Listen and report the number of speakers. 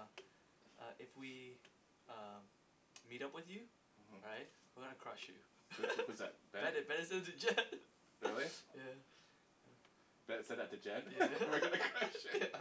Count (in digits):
2